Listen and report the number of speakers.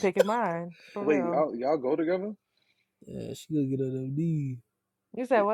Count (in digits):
3